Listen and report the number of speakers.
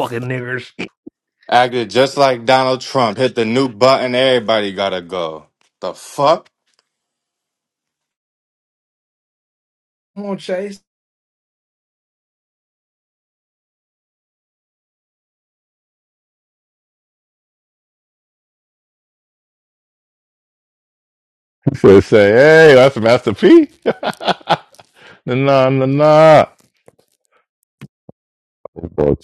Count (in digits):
3